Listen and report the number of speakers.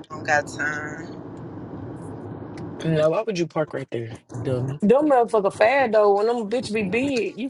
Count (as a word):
three